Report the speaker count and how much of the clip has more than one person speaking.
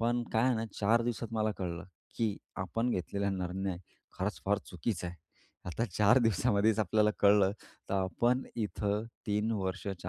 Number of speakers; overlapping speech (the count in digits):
1, no overlap